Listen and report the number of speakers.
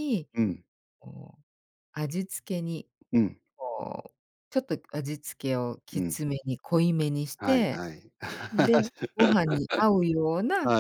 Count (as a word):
two